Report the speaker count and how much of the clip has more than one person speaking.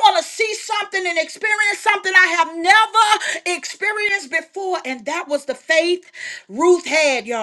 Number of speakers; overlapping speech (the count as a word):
one, no overlap